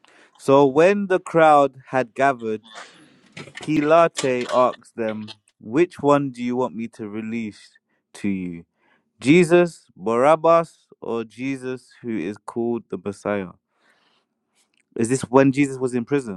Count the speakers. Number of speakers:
1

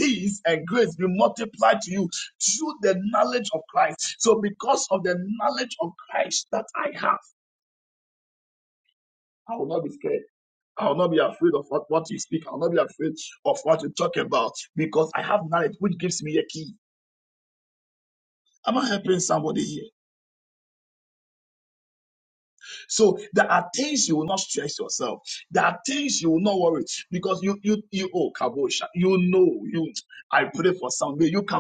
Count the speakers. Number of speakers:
1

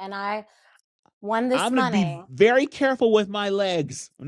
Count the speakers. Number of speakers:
2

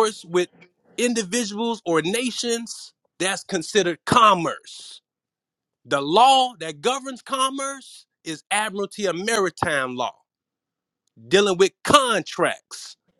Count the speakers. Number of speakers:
1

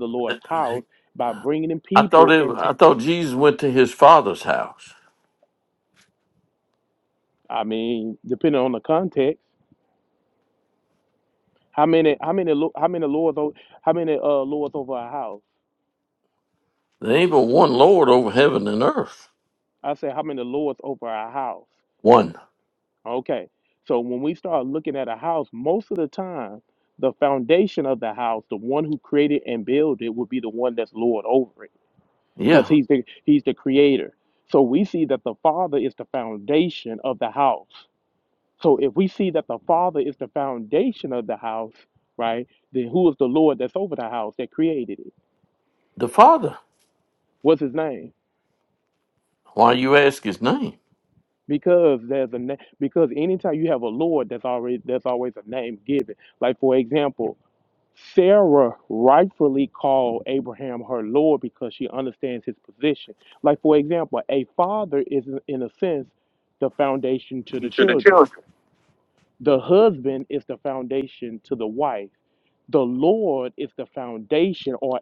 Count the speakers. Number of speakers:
2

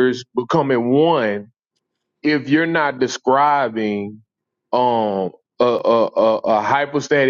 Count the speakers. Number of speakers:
1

